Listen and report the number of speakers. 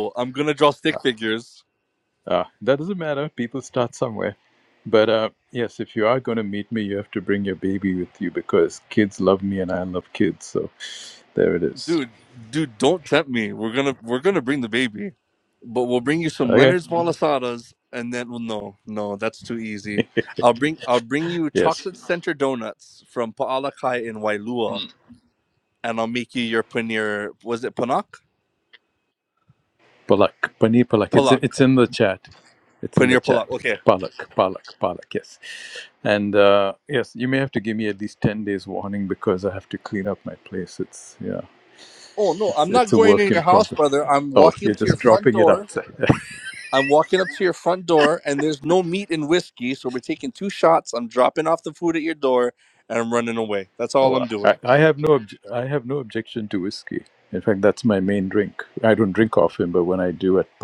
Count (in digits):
2